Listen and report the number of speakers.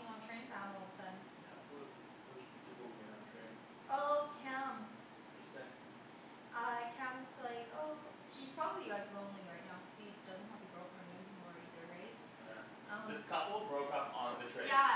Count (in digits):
2